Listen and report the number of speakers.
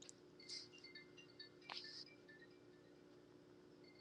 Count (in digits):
0